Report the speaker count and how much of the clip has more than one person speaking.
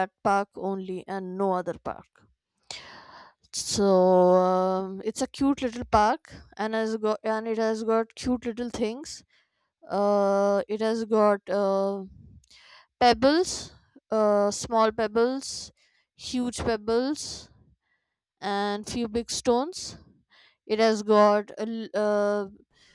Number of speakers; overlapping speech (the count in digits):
1, no overlap